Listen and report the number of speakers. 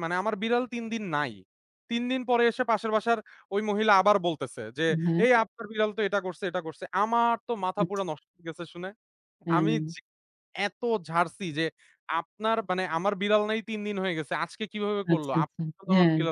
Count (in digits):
2